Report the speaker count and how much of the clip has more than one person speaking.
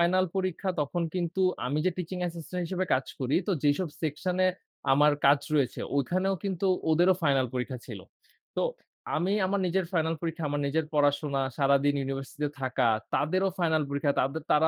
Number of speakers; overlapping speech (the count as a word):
one, no overlap